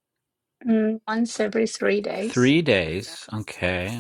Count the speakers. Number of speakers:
two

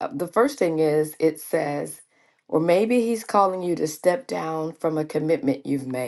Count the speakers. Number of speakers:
one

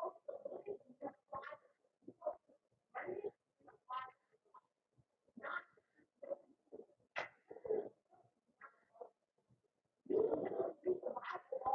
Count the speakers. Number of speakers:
zero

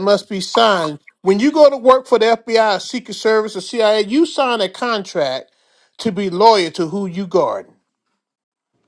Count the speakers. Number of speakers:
one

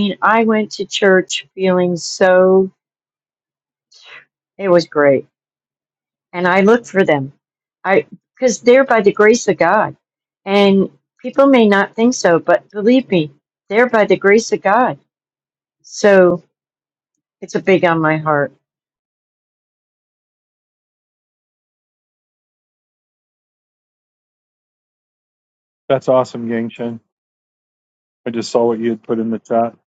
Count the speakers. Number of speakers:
two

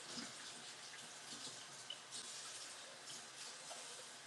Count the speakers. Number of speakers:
zero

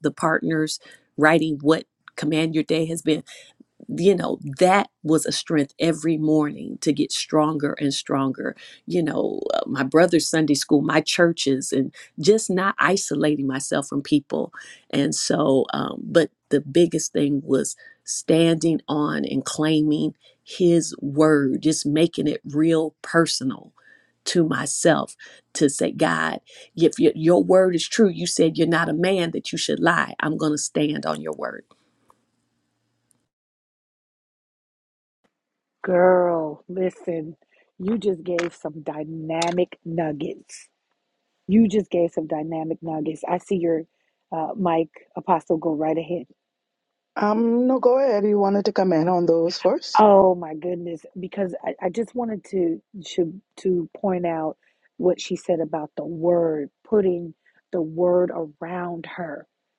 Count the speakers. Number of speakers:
three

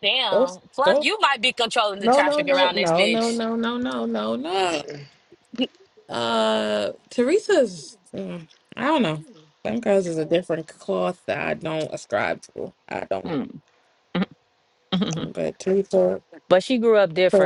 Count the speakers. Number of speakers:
three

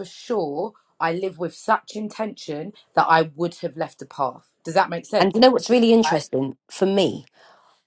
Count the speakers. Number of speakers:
two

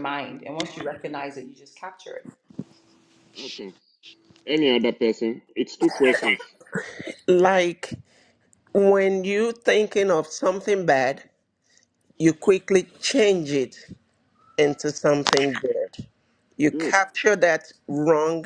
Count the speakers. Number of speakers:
three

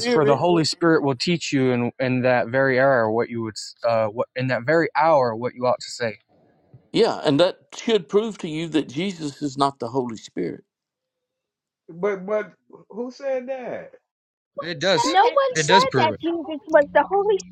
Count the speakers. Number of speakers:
four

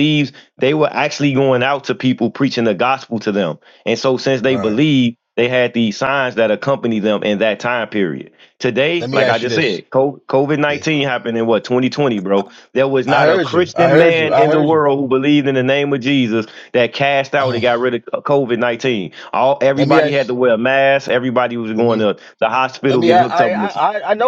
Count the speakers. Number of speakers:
two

